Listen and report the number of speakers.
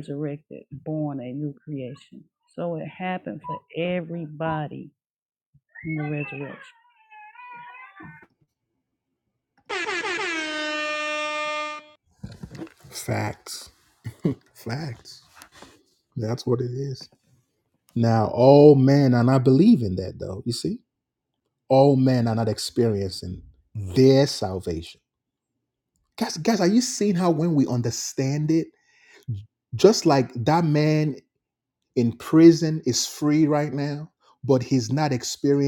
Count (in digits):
2